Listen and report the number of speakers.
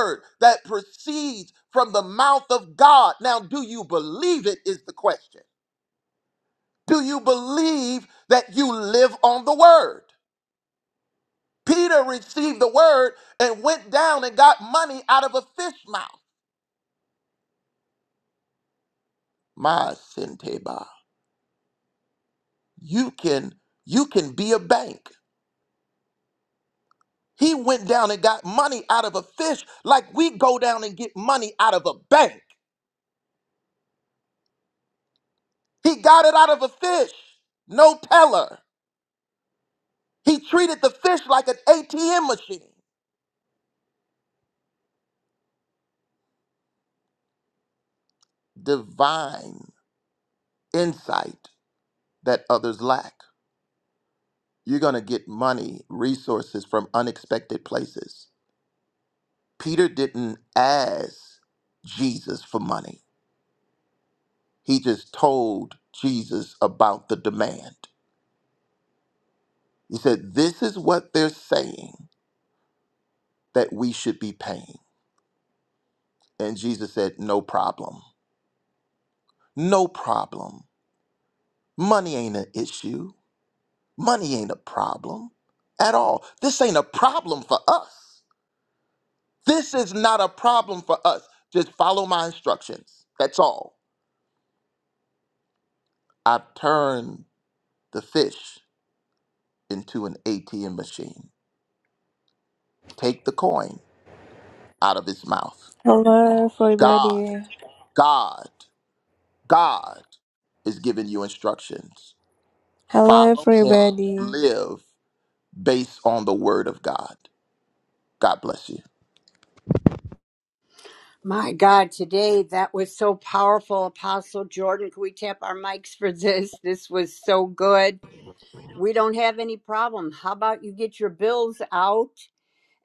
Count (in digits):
3